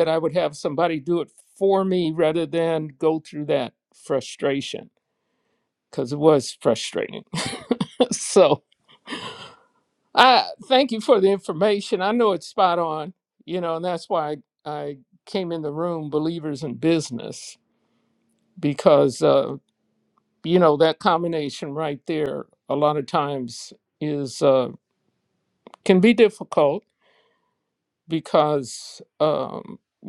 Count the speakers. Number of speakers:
1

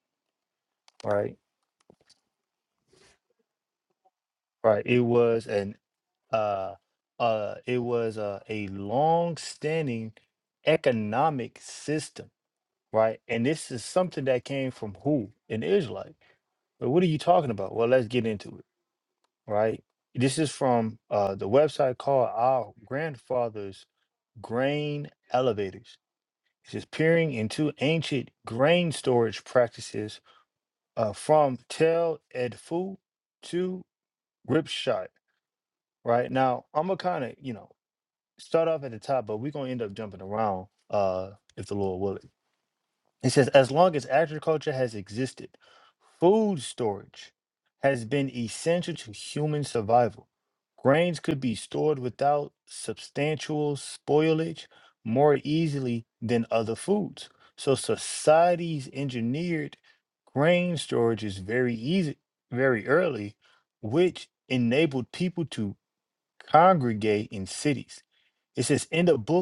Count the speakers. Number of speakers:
1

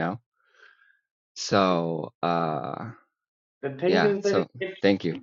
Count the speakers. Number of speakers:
2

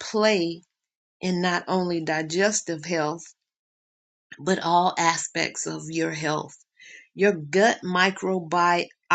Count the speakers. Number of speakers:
1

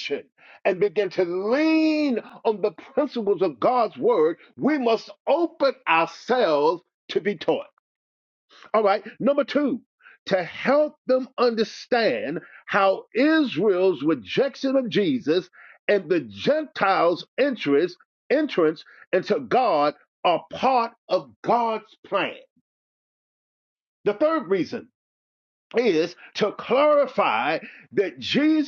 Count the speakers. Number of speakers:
1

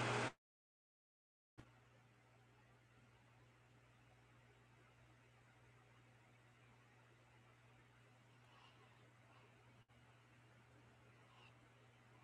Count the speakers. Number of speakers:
0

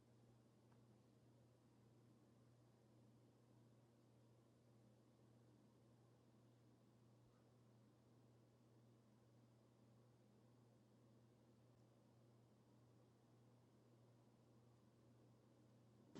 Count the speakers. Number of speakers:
0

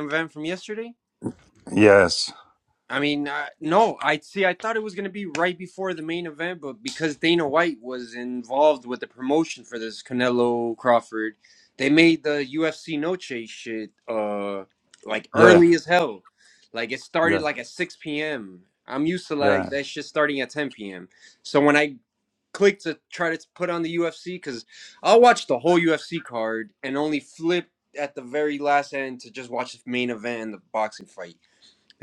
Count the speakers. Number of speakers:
2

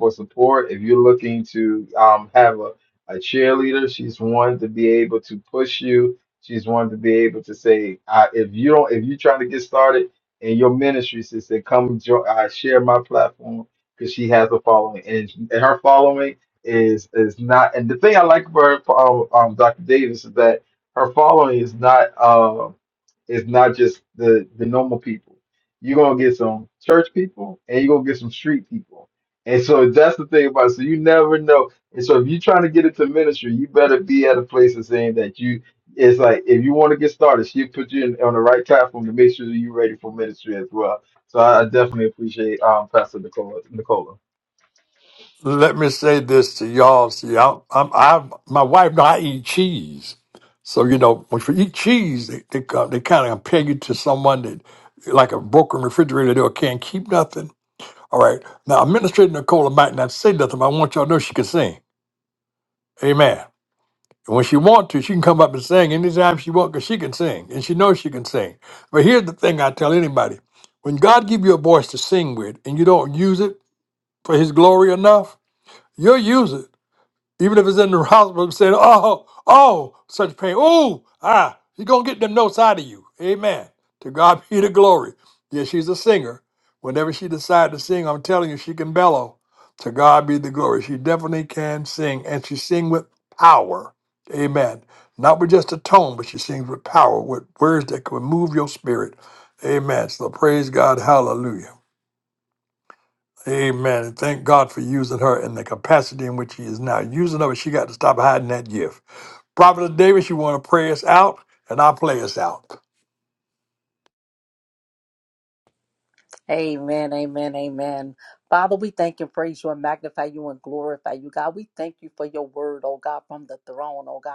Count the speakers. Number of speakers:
3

